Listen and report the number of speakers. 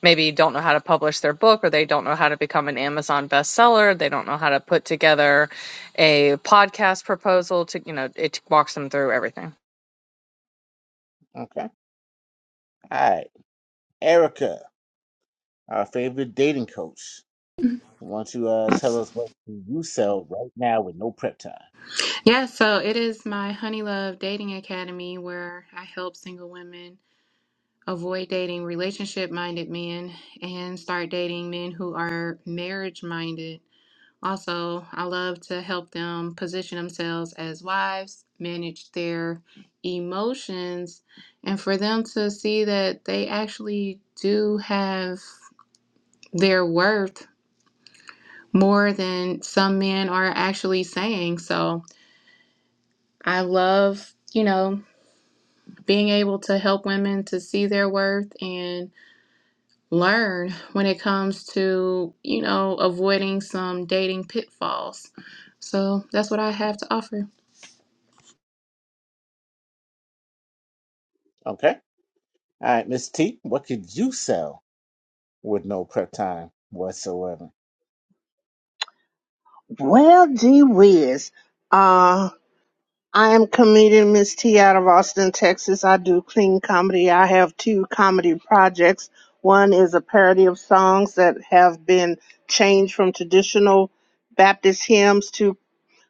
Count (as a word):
four